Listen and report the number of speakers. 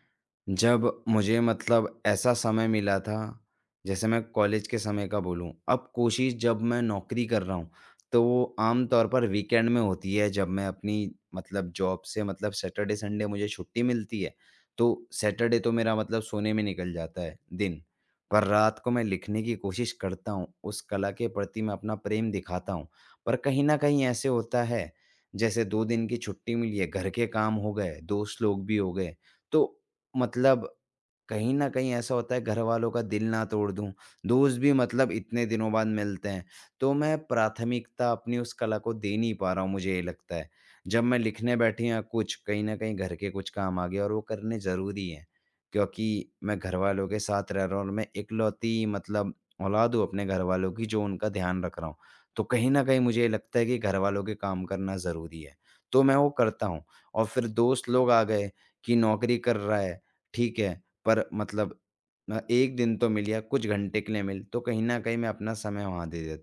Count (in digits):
1